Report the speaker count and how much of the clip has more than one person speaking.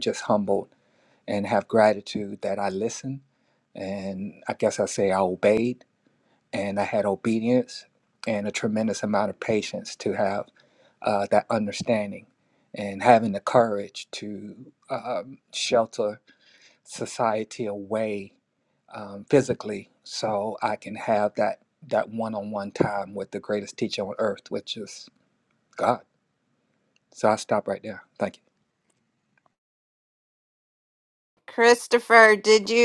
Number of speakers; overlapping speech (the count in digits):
2, no overlap